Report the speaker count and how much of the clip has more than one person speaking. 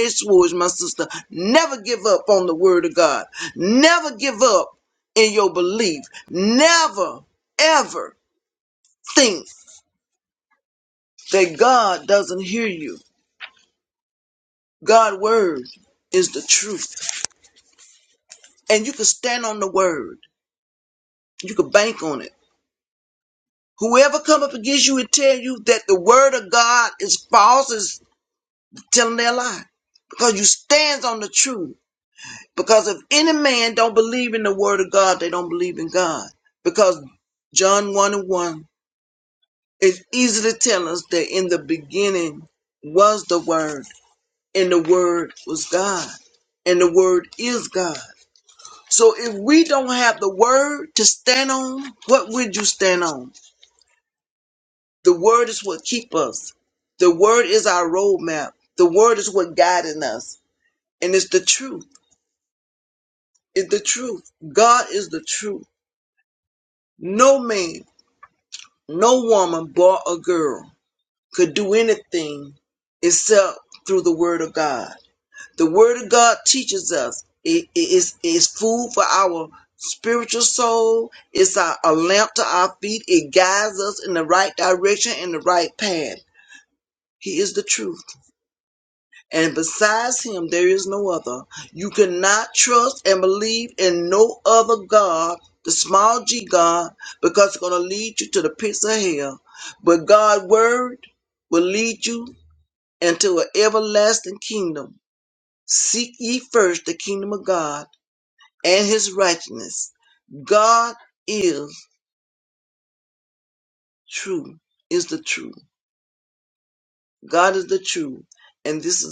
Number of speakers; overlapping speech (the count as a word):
one, no overlap